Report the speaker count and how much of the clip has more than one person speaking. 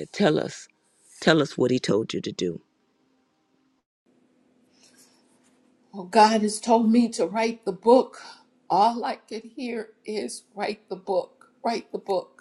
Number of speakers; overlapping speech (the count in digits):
2, no overlap